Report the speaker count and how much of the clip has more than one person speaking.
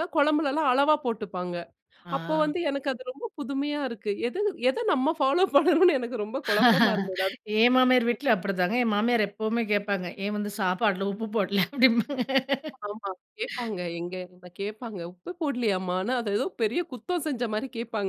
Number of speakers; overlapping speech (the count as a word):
two, about 2%